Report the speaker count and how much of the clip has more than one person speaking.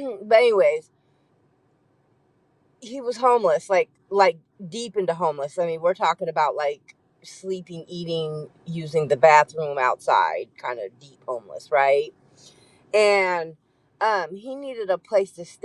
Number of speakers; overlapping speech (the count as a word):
one, no overlap